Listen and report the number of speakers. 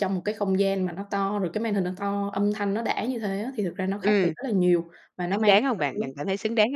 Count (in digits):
2